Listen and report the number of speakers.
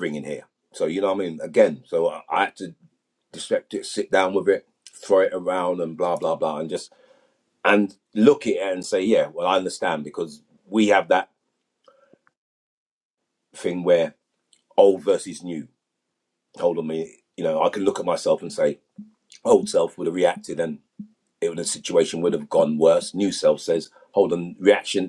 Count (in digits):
1